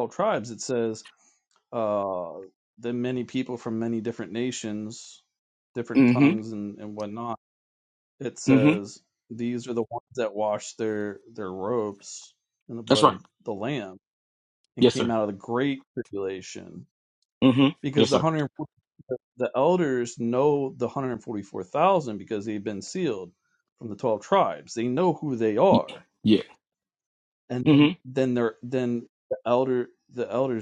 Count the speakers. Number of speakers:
2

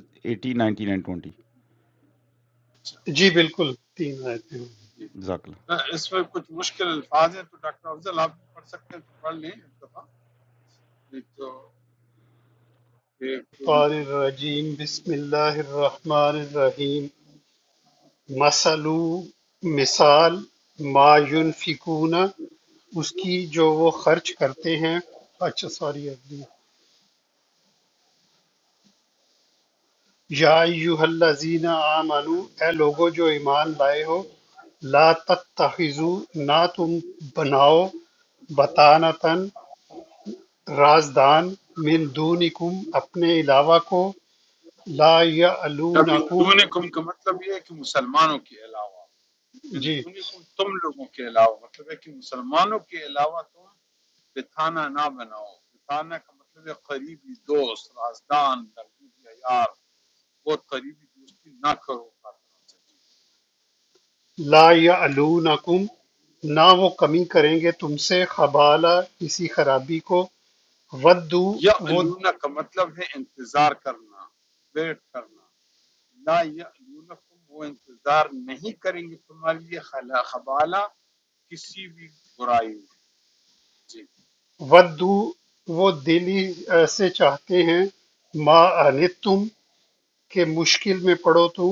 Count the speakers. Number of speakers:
3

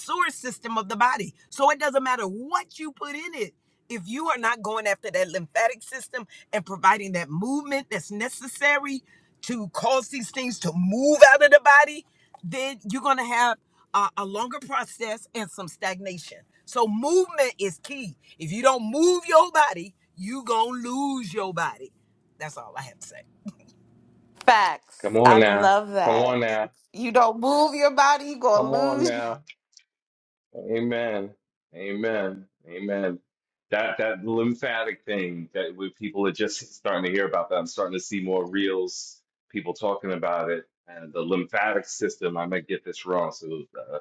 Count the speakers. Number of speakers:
3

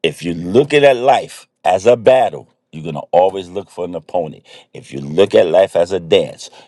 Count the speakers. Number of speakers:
1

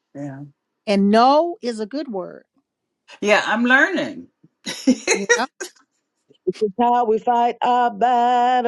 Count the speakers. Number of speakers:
3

